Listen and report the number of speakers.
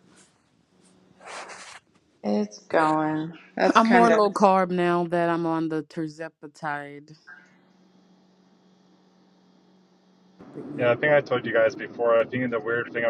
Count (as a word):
three